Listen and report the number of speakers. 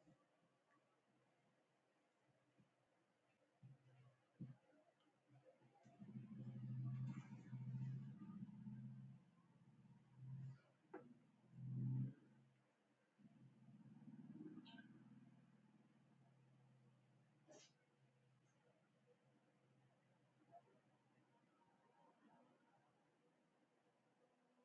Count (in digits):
0